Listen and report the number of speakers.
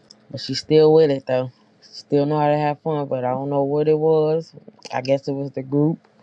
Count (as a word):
one